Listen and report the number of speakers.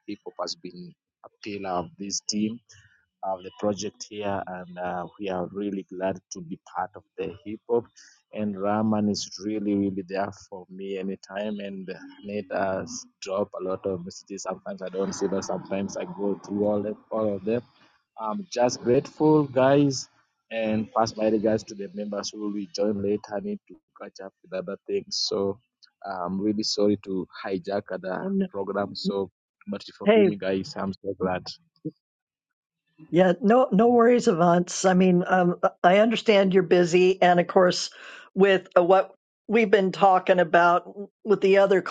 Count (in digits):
2